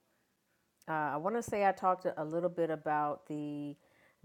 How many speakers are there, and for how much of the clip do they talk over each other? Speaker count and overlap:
1, no overlap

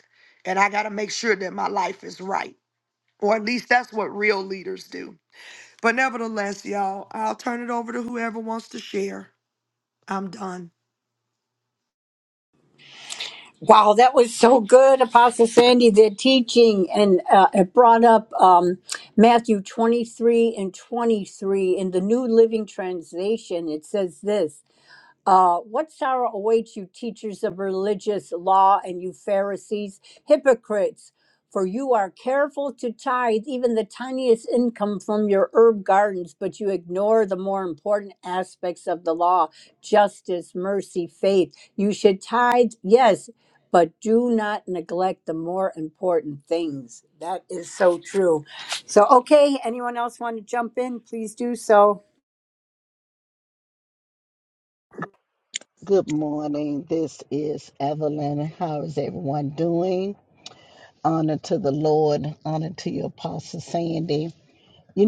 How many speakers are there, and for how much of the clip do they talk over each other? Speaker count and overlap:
3, no overlap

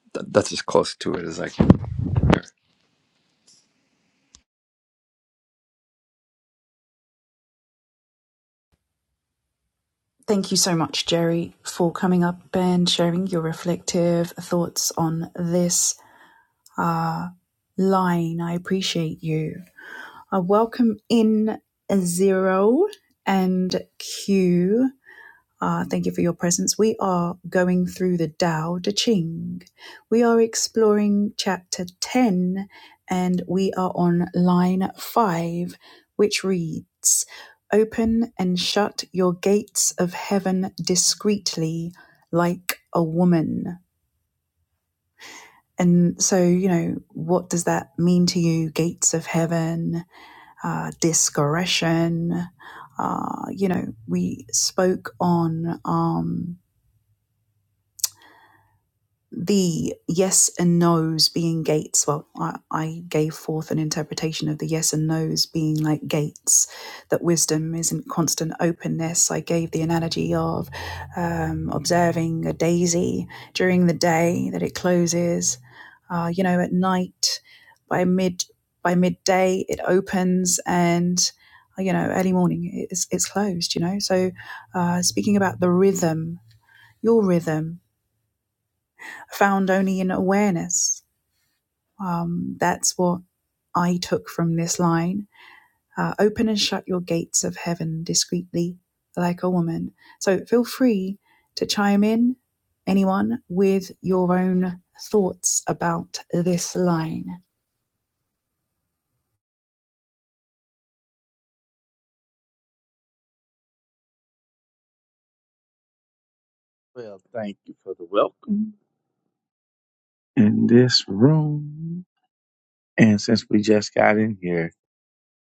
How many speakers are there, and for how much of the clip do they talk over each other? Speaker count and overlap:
3, no overlap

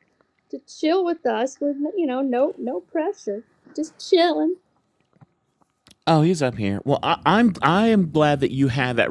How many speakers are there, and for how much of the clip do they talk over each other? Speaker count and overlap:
2, no overlap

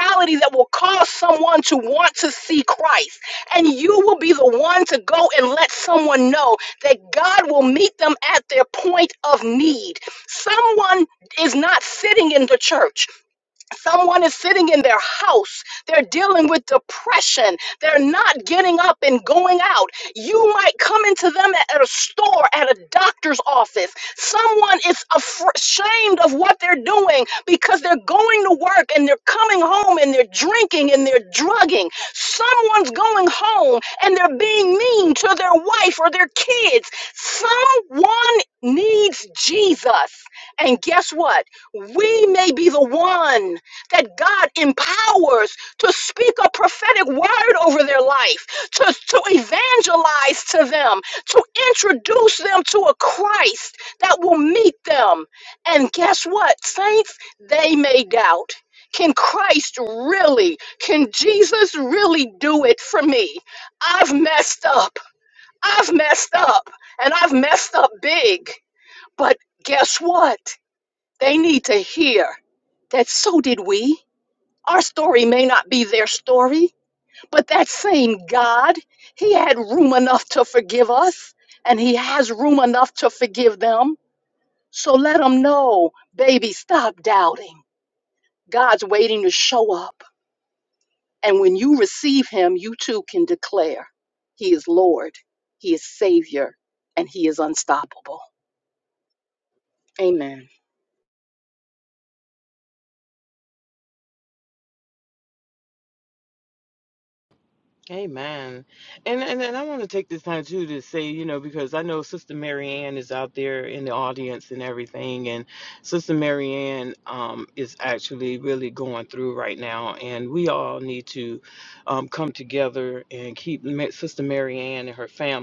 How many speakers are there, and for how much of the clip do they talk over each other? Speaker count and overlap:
2, no overlap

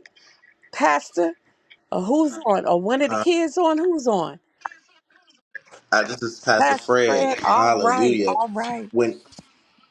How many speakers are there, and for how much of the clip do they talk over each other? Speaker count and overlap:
2, about 21%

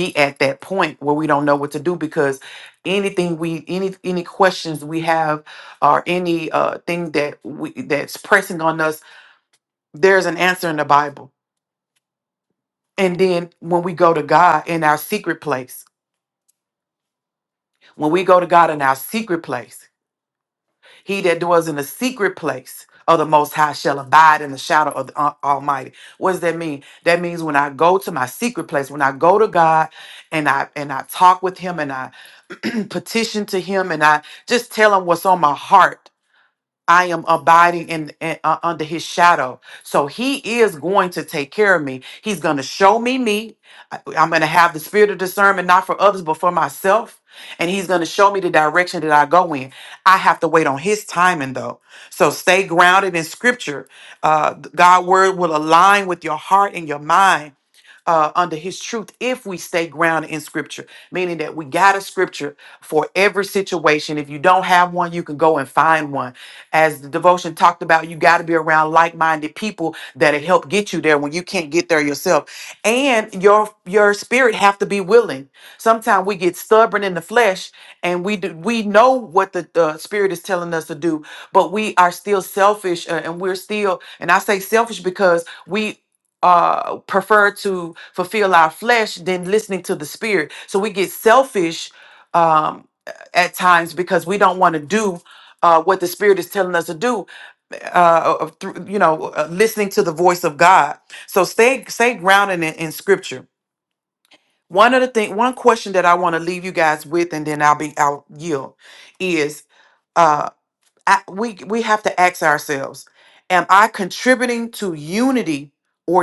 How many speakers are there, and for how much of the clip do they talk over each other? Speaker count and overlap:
1, no overlap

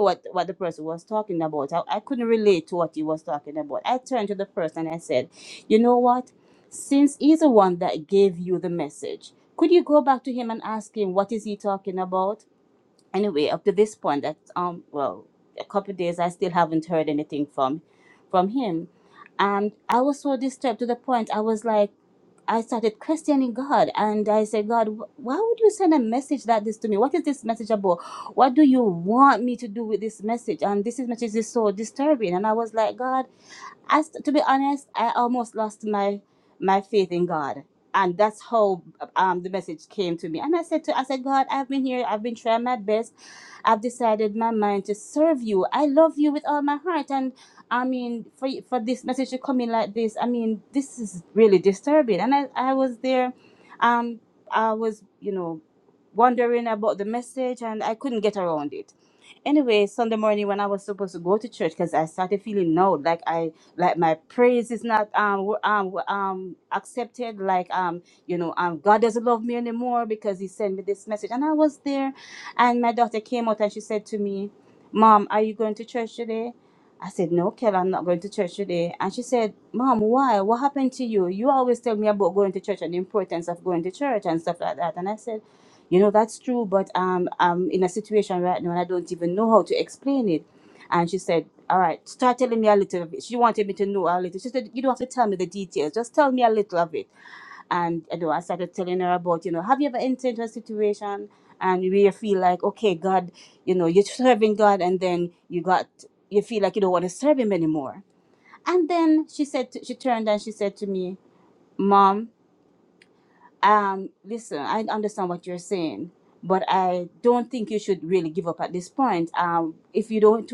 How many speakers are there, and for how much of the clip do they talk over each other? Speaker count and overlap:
1, no overlap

